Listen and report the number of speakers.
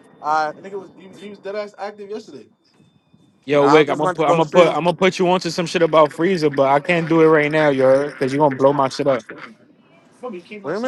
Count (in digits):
3